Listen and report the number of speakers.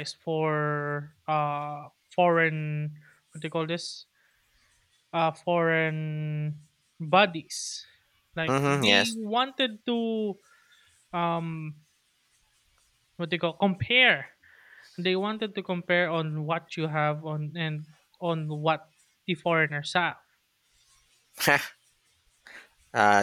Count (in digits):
2